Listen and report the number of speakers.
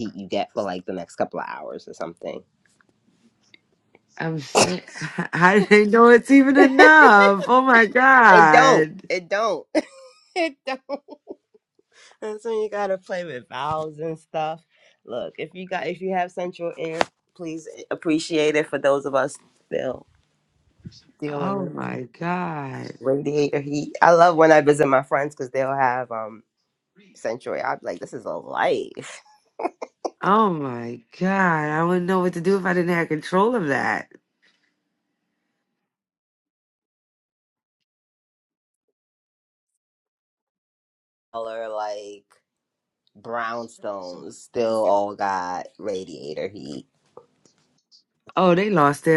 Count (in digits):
2